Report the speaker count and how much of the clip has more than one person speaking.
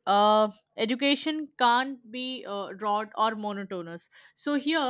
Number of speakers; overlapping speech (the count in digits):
1, no overlap